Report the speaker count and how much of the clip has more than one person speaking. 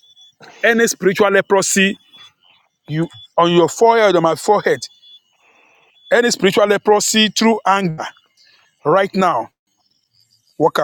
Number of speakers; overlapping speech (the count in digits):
1, no overlap